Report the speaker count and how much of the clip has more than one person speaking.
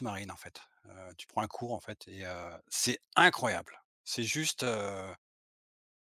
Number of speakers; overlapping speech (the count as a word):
one, no overlap